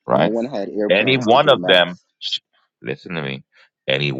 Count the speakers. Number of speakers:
2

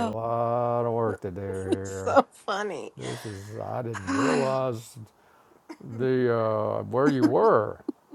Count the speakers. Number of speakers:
2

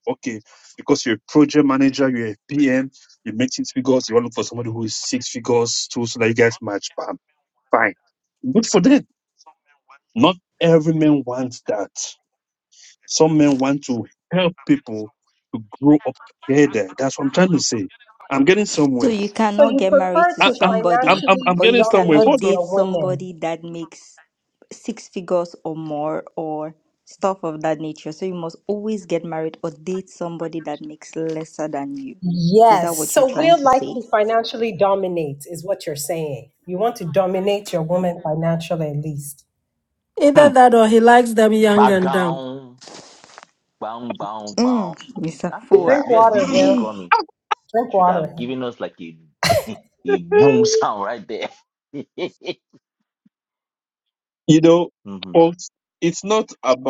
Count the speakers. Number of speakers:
5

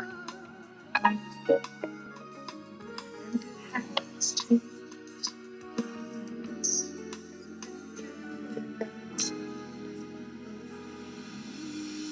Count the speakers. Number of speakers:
0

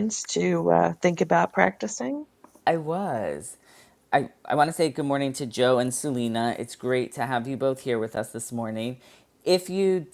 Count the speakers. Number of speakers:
2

